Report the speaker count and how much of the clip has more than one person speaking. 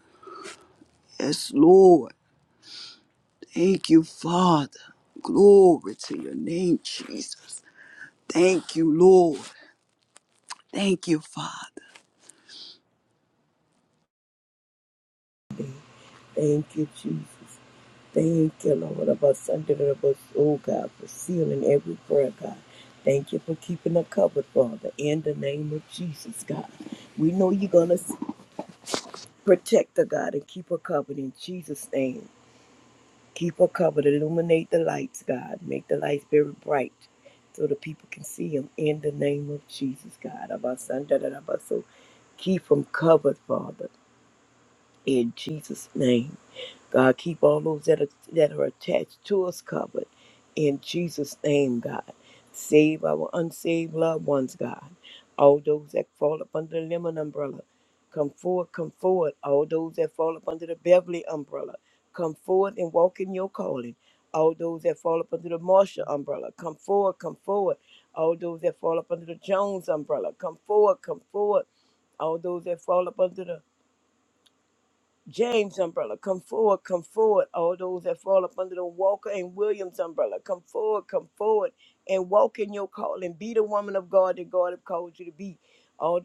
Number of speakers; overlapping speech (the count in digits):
2, no overlap